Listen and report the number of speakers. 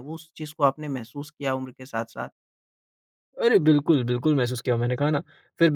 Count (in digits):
2